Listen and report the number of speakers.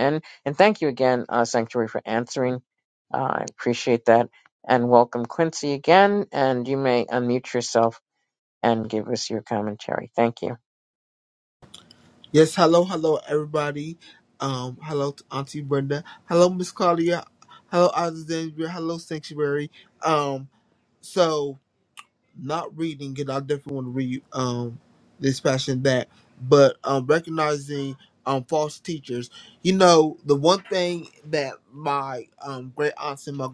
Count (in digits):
2